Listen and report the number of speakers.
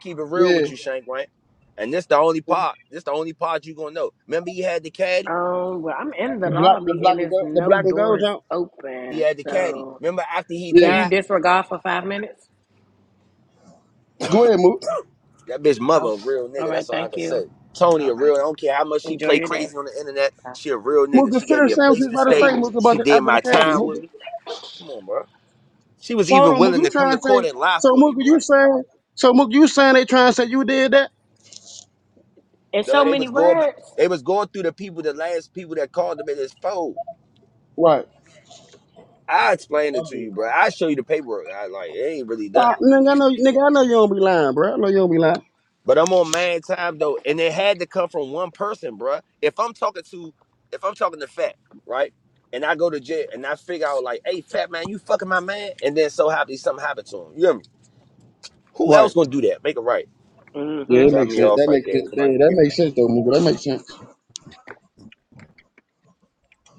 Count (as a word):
three